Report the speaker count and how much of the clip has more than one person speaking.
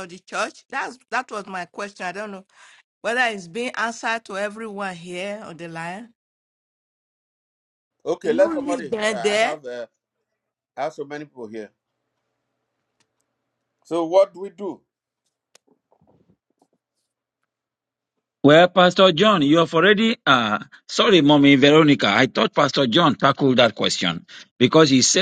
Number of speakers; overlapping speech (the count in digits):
3, about 5%